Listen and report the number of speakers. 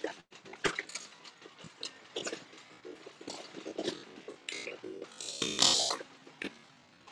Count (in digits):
0